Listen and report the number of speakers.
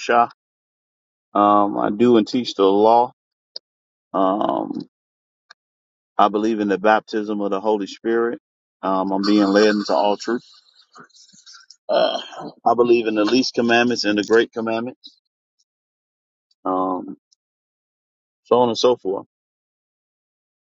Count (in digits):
1